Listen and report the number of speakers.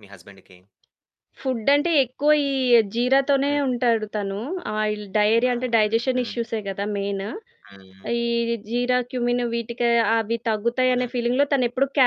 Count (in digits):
2